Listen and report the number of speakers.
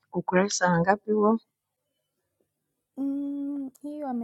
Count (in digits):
2